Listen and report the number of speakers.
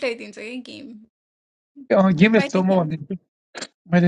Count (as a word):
two